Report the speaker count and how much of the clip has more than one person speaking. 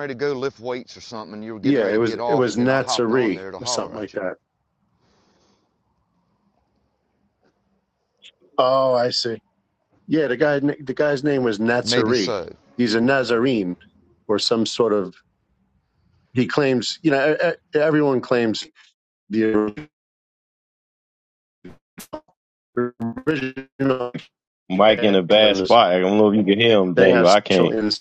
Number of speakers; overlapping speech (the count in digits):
3, about 17%